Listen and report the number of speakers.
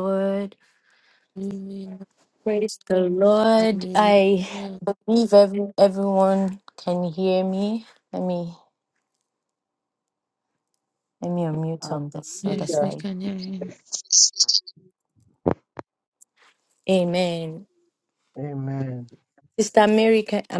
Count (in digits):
3